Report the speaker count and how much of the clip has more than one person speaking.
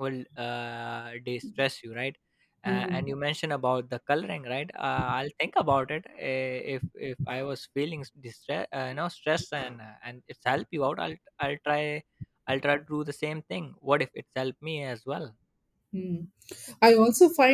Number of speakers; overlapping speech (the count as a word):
two, about 3%